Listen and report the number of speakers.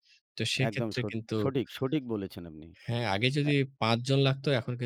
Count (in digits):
2